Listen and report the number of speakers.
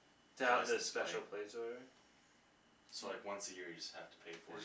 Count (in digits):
2